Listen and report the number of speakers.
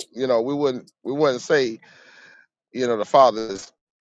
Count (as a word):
one